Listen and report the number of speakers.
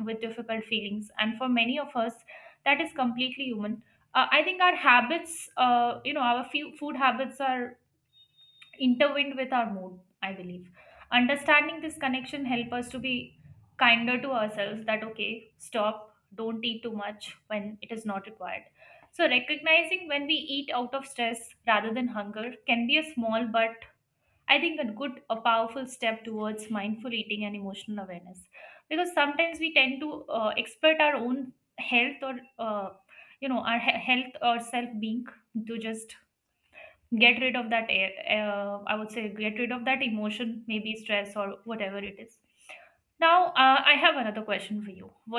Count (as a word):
one